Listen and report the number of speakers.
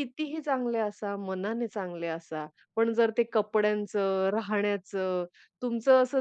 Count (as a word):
one